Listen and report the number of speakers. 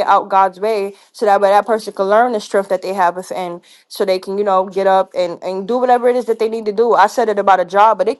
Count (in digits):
1